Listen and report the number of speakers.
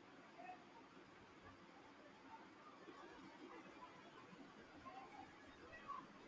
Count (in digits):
0